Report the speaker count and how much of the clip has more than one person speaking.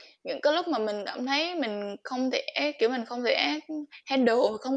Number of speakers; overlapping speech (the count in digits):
1, no overlap